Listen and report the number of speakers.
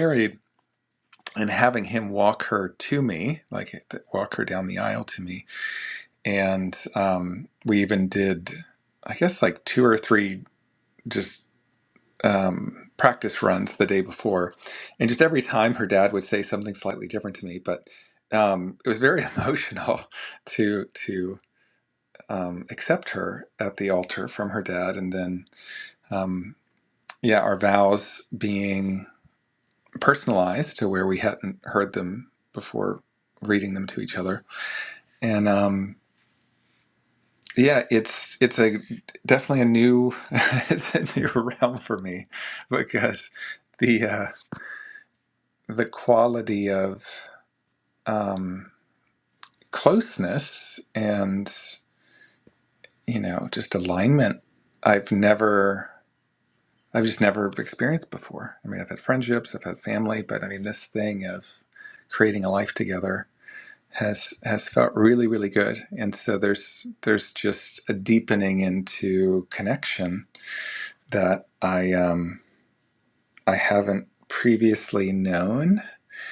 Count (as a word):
one